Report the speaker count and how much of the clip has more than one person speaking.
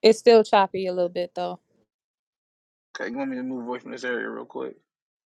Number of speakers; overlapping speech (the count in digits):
2, no overlap